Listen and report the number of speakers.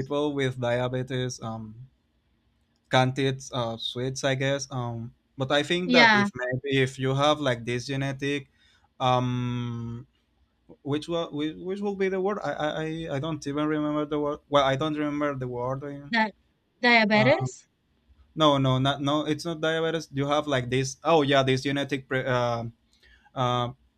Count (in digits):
2